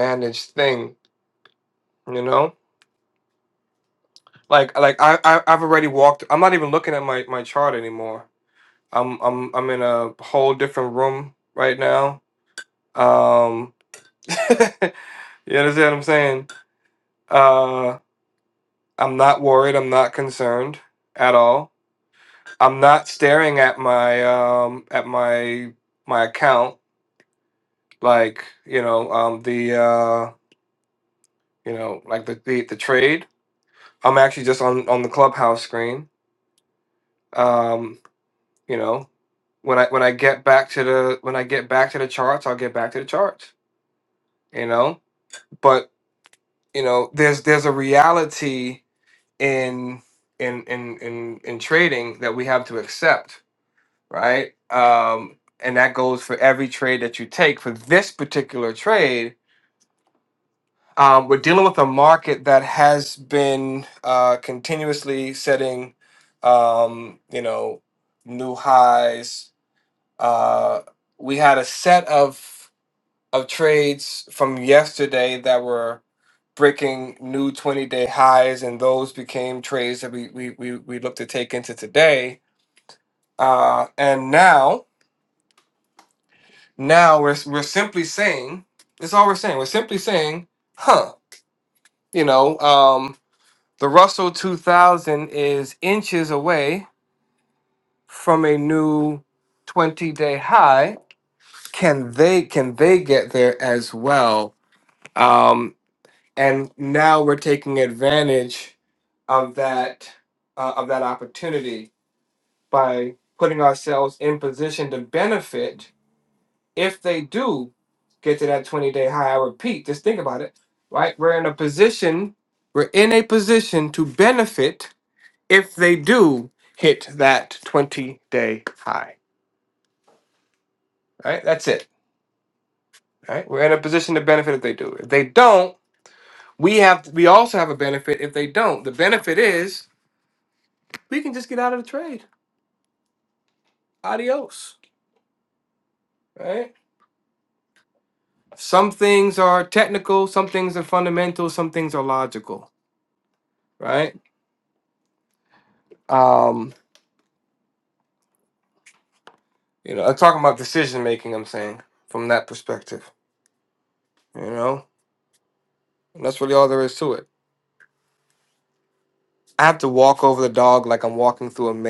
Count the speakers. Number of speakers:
one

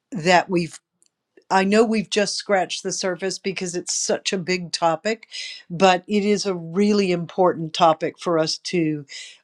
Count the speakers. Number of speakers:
one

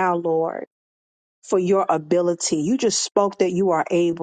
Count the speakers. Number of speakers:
one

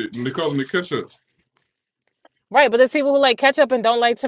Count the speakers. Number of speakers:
two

